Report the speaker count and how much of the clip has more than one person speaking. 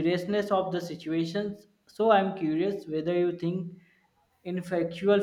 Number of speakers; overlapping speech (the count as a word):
one, no overlap